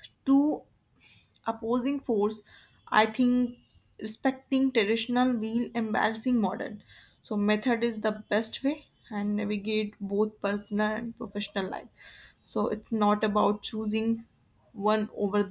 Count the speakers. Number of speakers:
1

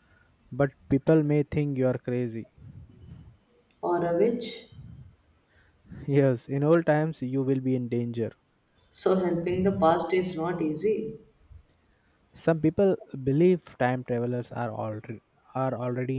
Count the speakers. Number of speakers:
2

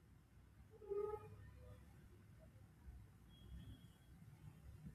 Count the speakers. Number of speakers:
0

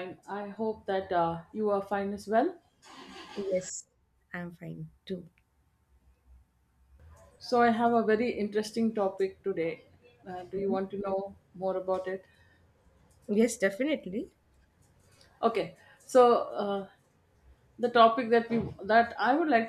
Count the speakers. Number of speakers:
2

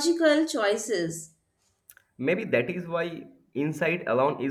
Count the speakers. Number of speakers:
2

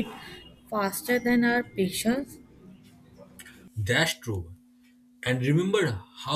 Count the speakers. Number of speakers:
2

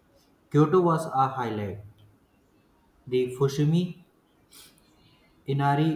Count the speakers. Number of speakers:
1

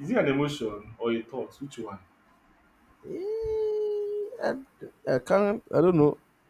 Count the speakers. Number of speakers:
2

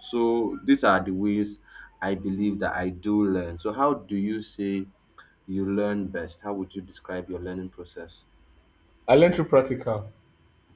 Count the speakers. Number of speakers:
2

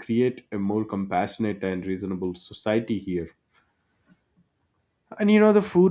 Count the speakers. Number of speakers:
1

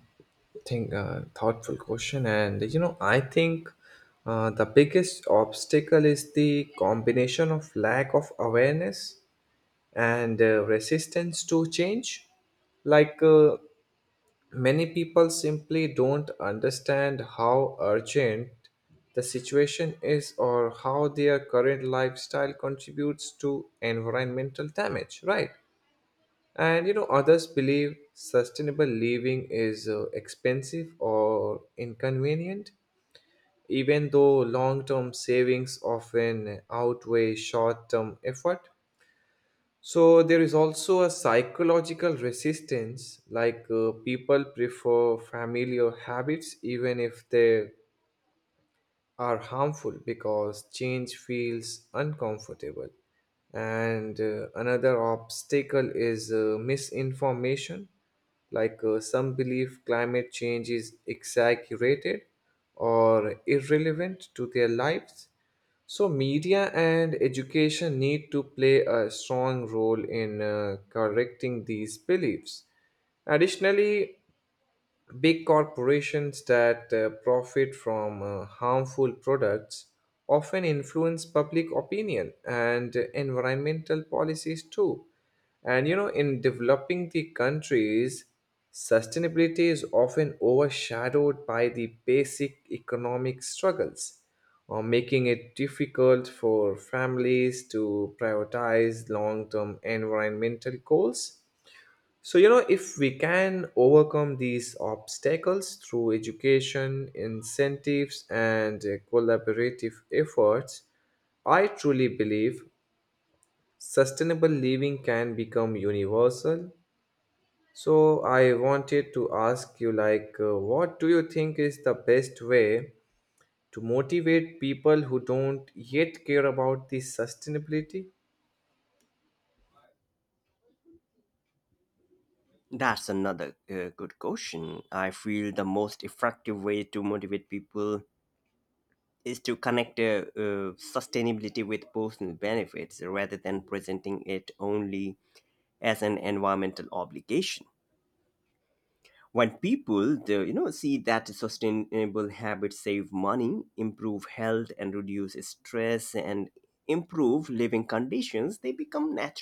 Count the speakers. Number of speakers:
2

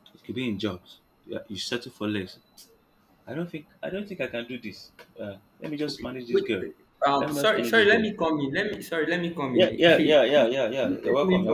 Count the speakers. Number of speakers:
2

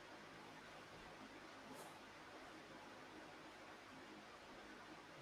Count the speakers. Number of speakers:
0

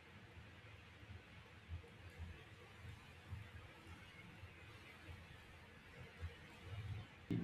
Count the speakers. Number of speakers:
0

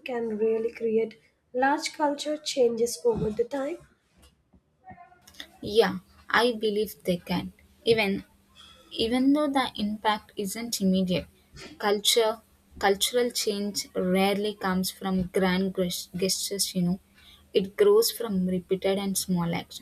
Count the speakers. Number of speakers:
2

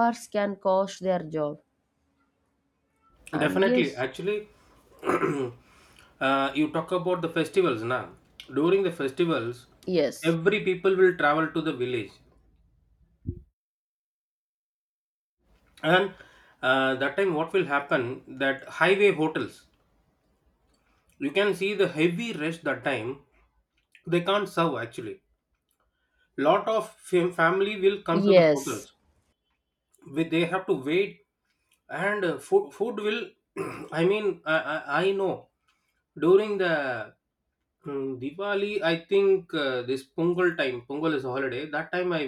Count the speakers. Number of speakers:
2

